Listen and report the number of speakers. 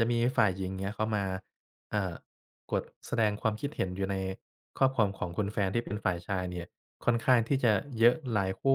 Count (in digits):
1